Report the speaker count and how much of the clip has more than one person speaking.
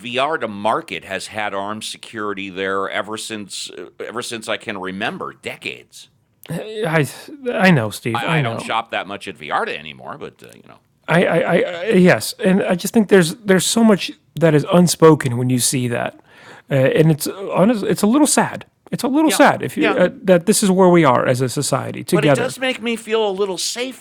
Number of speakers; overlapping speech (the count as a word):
two, about 5%